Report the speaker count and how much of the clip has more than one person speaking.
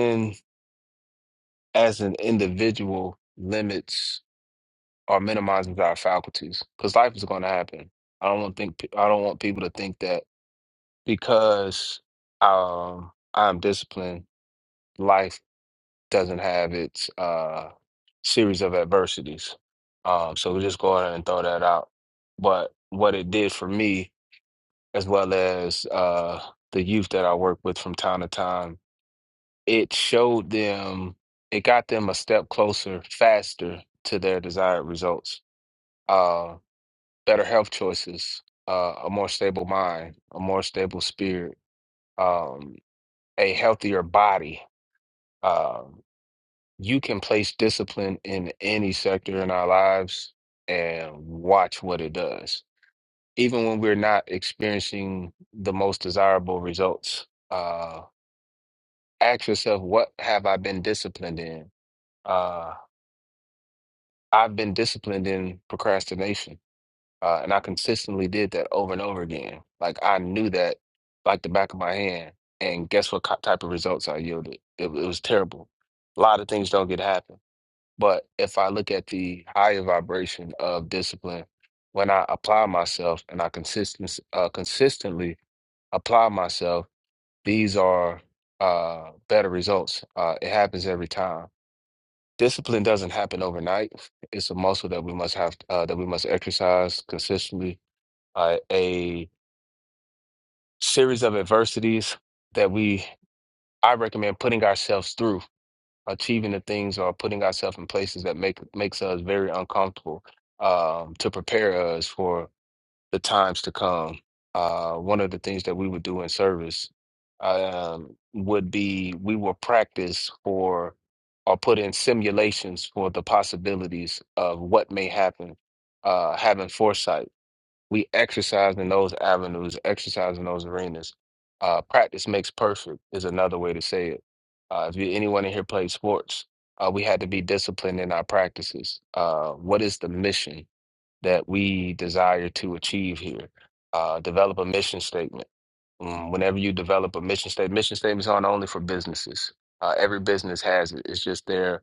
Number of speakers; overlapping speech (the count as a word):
one, no overlap